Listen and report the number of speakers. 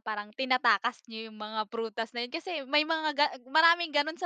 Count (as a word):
one